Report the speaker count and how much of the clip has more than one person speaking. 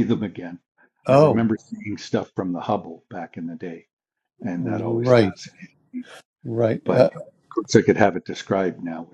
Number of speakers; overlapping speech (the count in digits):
2, about 15%